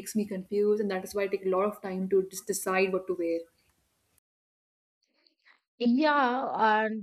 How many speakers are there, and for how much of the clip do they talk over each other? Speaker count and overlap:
2, no overlap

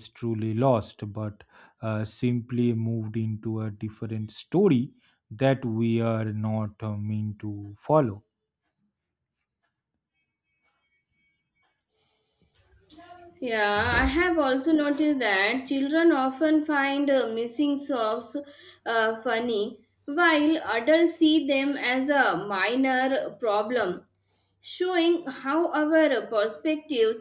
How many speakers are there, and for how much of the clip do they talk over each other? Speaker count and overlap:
2, no overlap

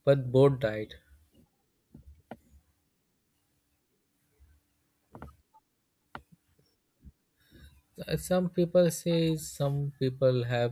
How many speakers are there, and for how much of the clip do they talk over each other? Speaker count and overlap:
1, no overlap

